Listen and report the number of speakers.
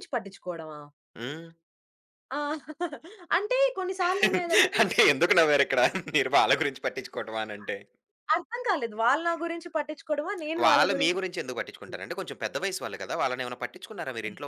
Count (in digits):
2